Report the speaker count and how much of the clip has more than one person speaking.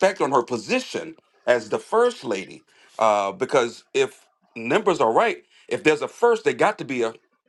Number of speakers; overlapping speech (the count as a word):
one, no overlap